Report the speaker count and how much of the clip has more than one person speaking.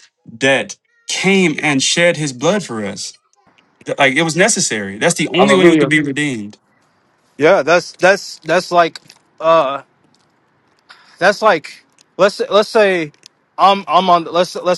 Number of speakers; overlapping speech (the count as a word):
two, about 4%